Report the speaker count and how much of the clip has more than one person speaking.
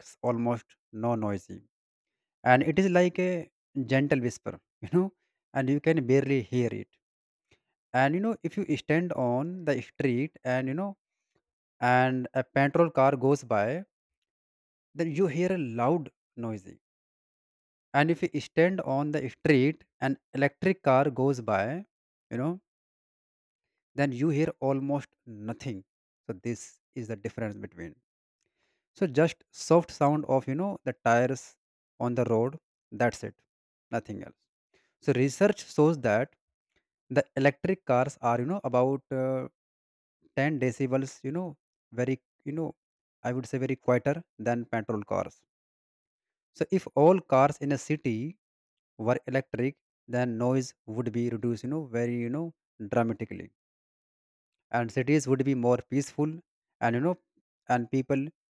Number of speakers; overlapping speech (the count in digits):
1, no overlap